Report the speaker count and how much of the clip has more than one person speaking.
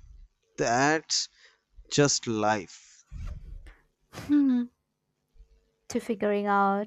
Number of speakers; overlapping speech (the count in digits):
2, no overlap